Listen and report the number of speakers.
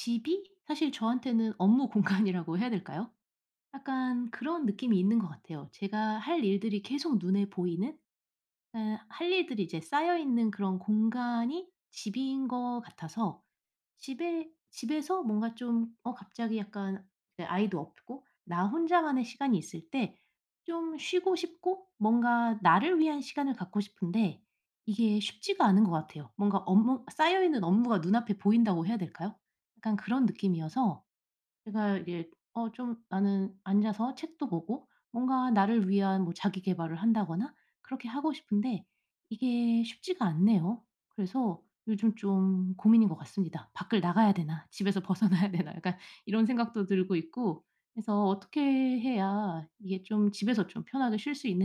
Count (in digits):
1